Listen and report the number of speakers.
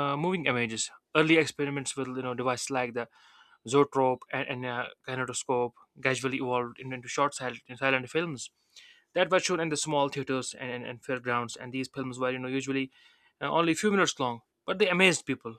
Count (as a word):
one